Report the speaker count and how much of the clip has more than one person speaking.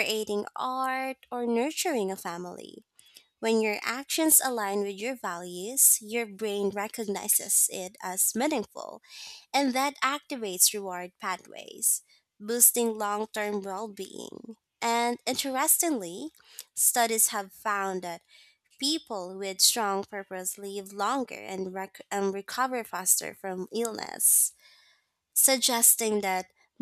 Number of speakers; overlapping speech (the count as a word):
one, no overlap